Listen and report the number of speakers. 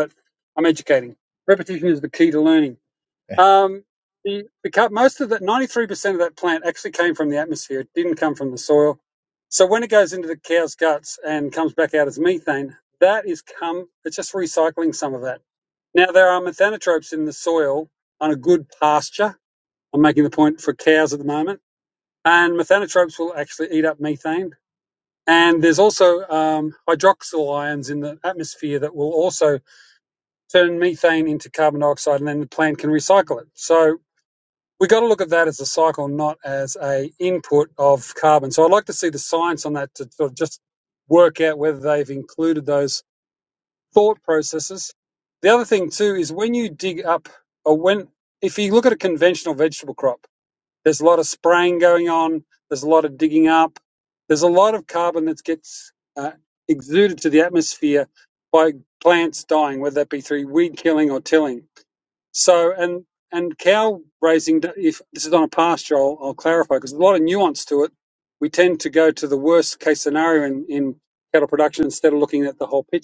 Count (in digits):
1